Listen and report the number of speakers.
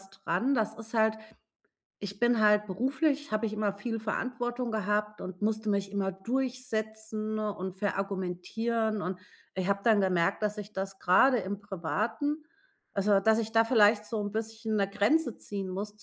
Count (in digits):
1